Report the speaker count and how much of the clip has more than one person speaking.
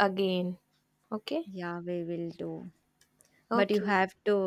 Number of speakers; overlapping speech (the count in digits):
2, about 9%